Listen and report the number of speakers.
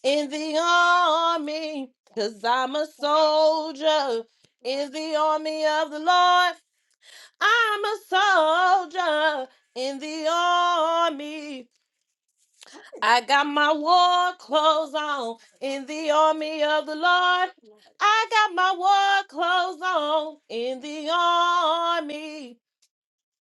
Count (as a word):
one